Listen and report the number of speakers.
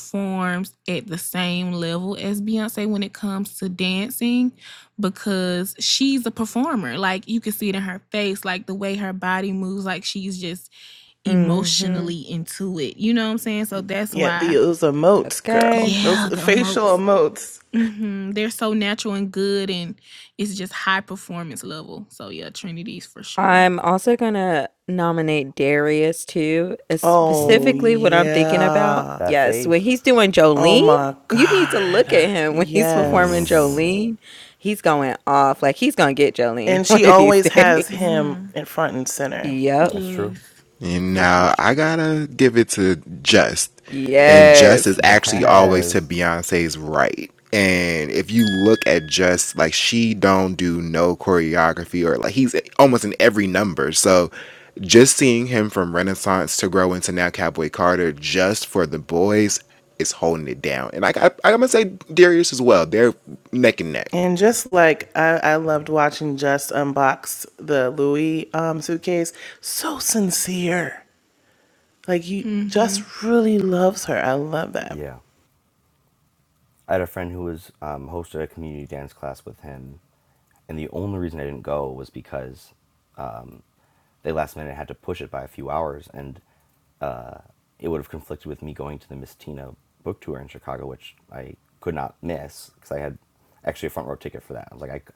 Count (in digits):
5